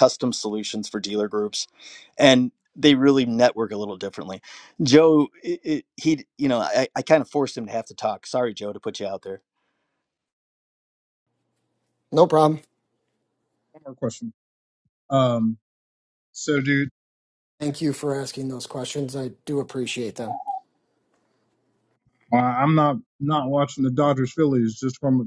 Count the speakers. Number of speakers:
three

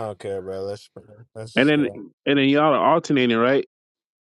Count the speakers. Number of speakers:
two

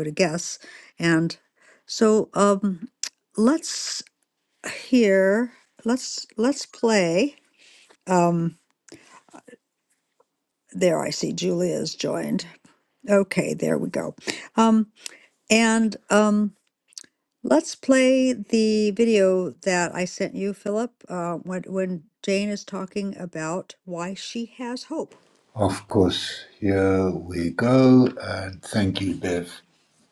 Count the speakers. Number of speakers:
two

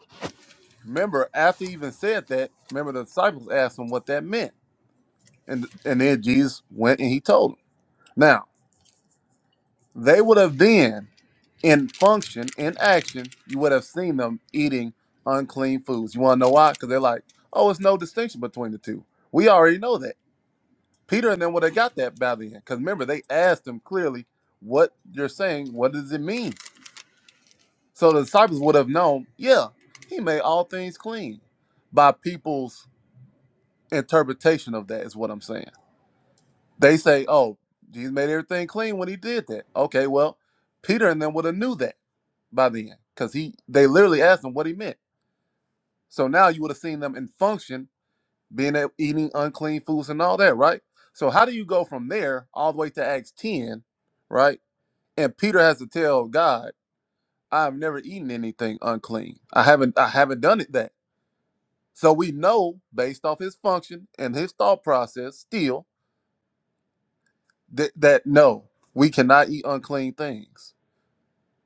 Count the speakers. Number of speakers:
one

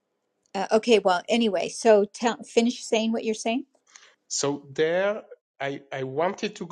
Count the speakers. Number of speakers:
two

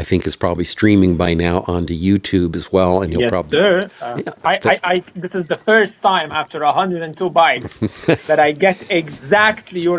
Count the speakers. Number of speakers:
two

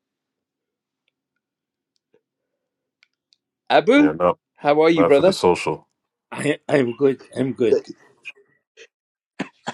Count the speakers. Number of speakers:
three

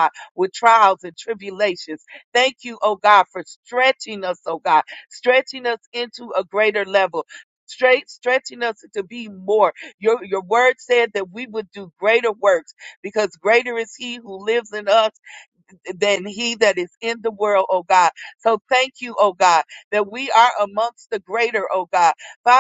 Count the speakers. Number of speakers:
one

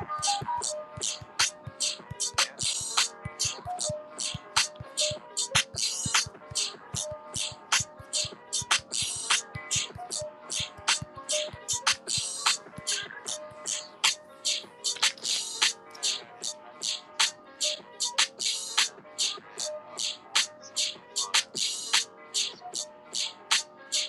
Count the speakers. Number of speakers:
zero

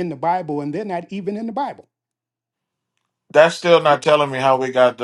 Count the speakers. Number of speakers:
two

